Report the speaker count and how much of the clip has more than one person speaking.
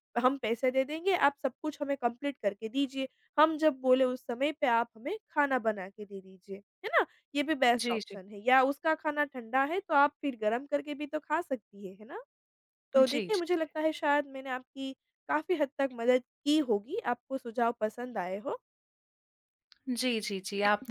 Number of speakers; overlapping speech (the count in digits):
2, about 4%